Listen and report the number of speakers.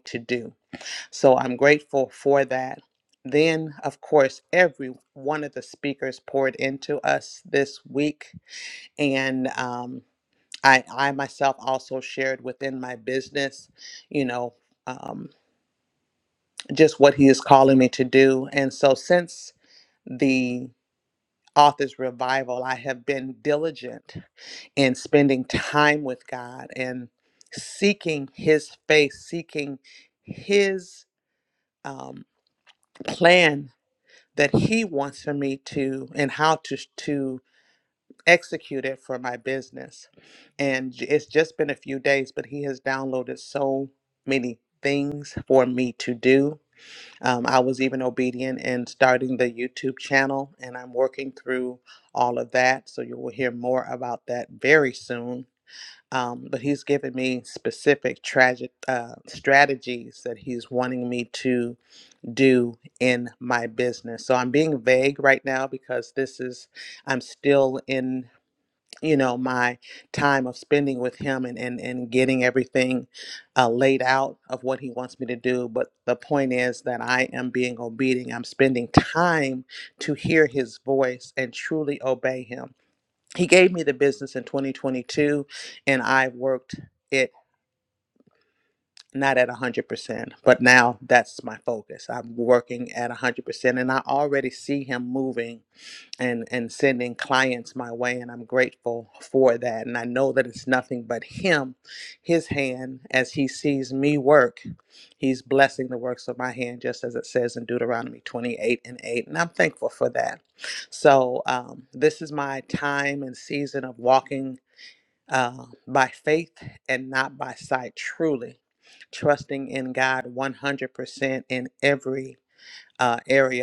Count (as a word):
one